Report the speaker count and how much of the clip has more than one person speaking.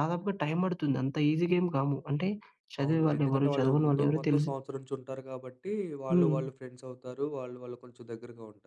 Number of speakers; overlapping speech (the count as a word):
two, about 25%